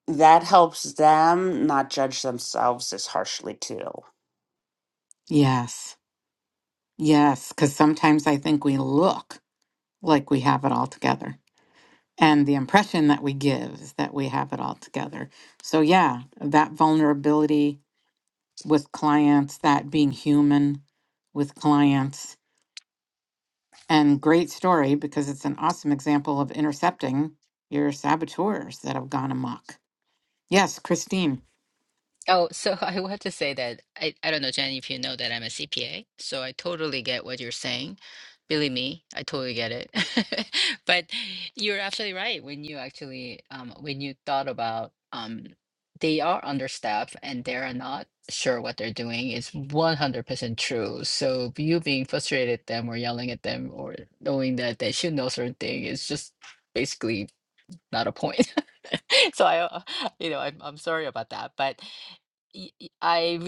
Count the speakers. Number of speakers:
3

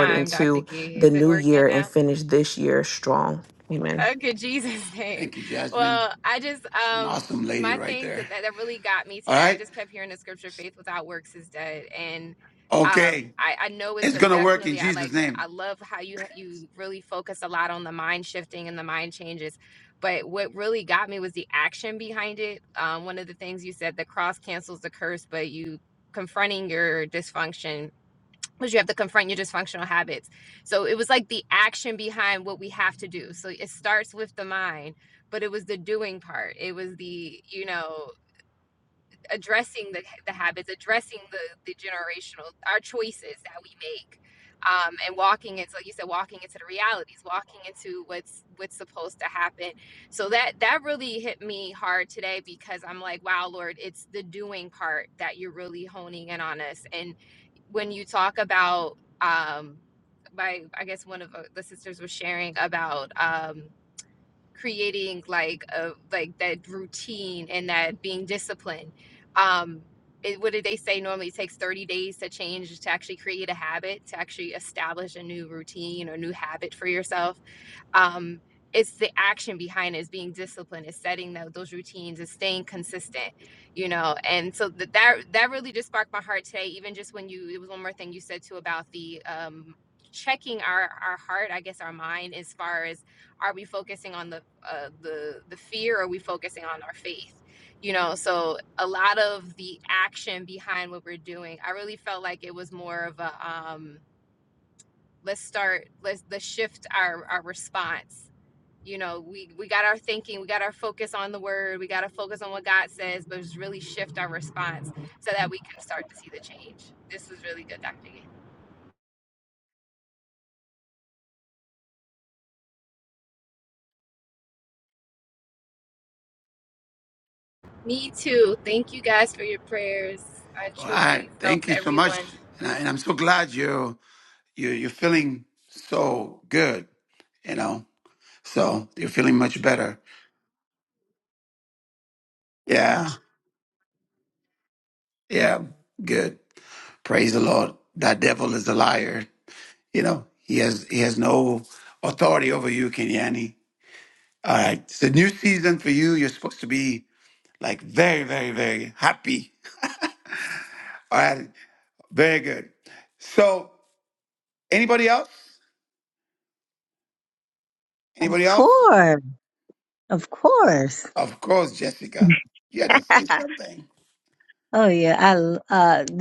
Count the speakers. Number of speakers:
4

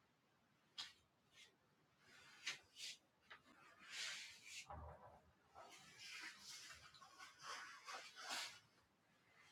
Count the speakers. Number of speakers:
0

